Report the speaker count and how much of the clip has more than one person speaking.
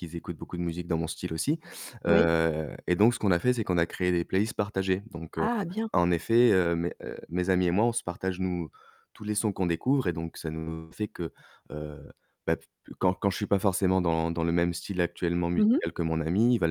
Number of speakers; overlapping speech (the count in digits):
2, about 4%